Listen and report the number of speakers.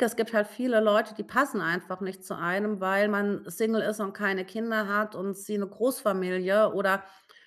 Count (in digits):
1